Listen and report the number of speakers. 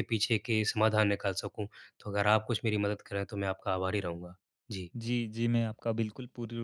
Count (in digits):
2